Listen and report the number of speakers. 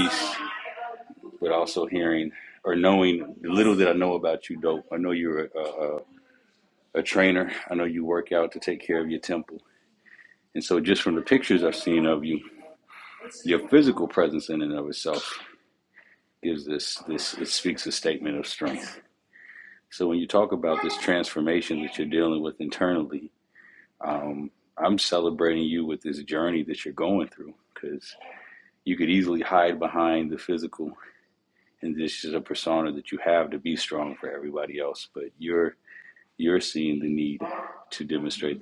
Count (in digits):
1